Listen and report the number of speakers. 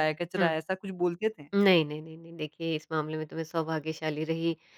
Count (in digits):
2